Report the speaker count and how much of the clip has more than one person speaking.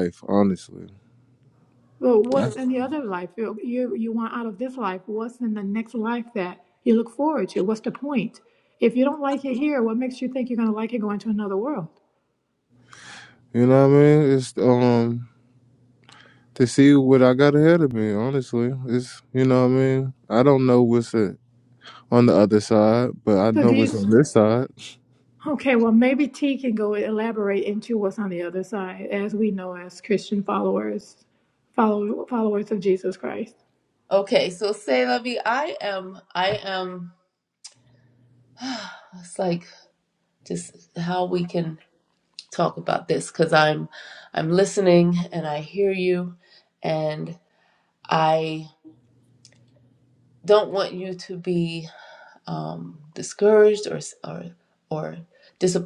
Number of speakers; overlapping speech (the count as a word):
three, about 1%